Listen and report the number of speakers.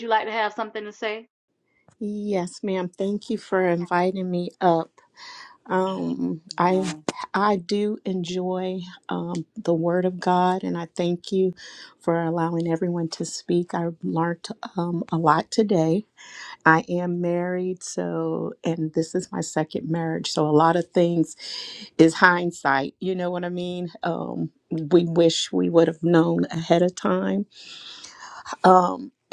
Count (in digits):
2